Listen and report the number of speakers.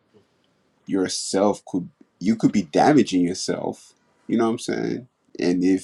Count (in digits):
1